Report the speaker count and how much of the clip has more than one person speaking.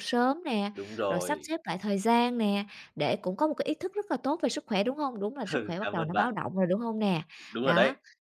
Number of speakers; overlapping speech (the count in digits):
2, about 14%